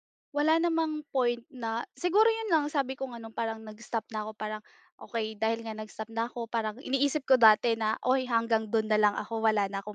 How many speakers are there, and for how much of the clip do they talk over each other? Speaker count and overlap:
1, no overlap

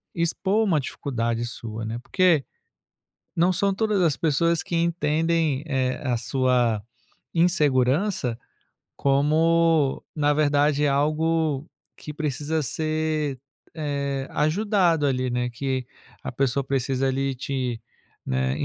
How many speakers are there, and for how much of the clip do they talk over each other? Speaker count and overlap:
1, no overlap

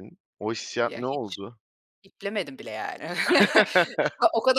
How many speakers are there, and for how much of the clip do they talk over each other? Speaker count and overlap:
2, about 11%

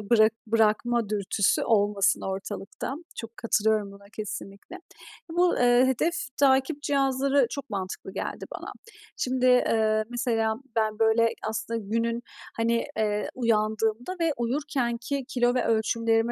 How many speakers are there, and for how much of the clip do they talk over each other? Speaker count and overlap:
1, no overlap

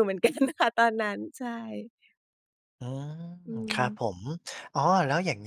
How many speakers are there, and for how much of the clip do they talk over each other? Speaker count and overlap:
2, about 5%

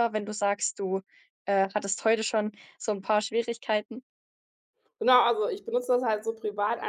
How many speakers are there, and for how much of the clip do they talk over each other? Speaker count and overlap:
2, no overlap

